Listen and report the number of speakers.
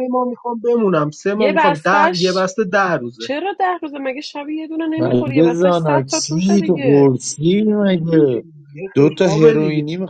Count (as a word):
three